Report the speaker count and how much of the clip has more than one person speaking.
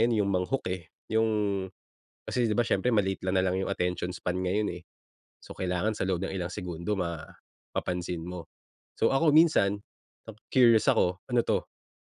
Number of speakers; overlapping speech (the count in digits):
1, no overlap